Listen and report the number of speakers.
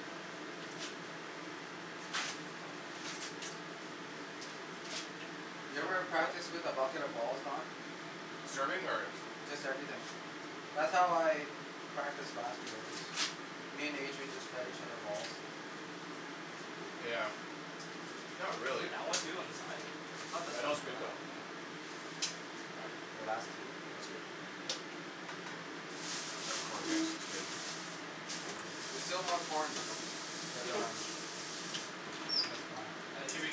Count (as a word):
three